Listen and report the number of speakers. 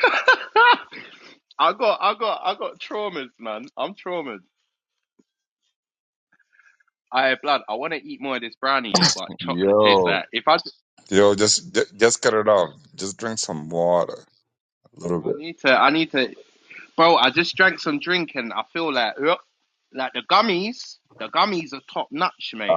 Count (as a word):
two